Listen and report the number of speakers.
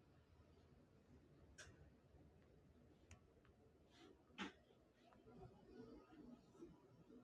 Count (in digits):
0